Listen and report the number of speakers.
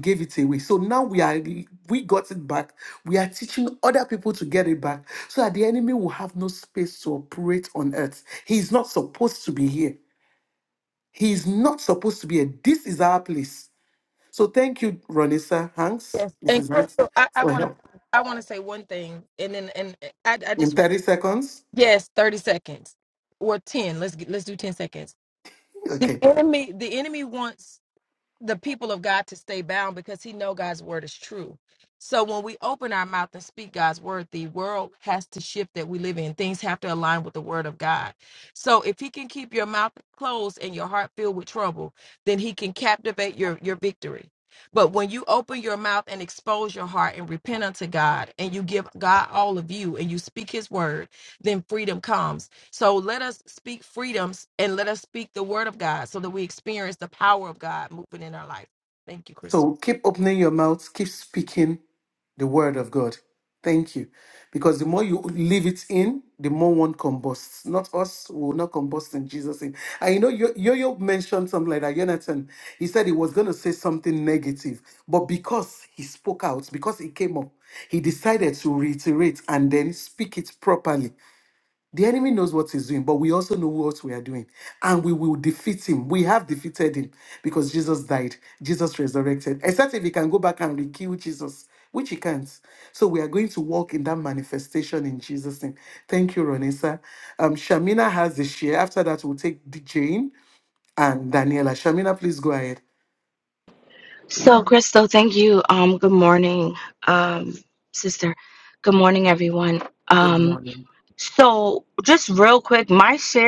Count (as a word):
three